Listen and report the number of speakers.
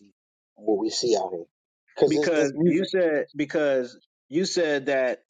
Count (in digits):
2